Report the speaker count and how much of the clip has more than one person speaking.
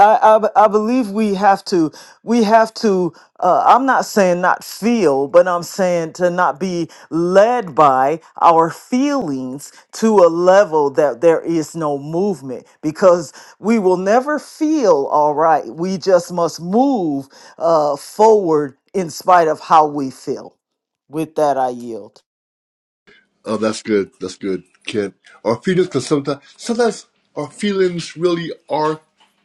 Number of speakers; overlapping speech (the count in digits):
2, no overlap